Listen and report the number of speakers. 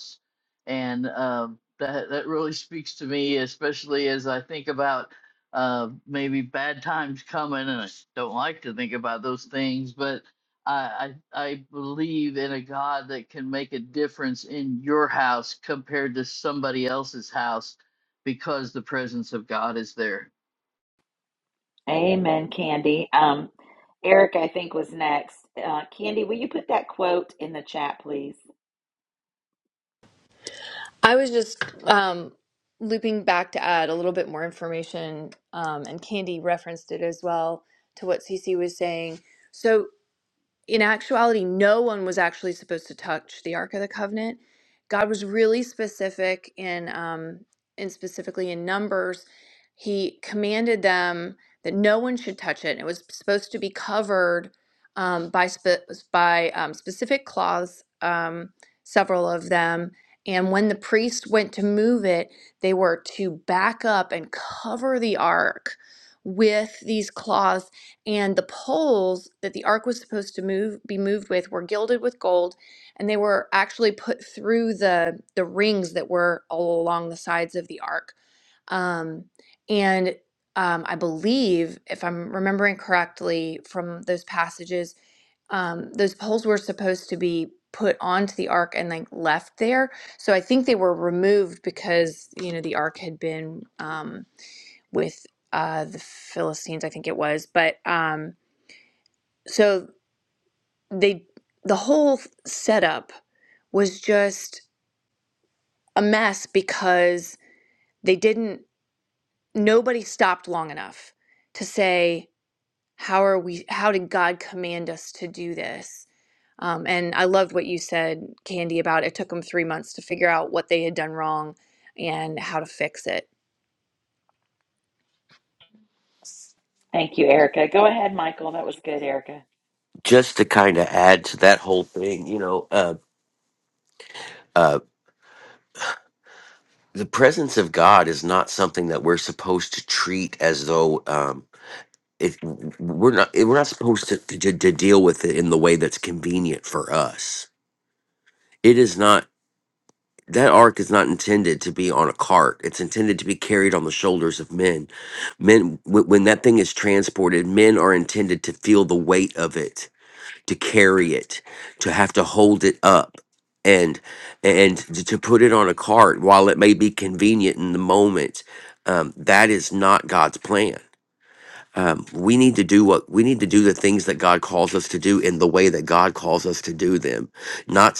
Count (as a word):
four